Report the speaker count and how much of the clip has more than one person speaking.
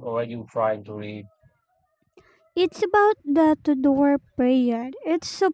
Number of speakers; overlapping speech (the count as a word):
two, no overlap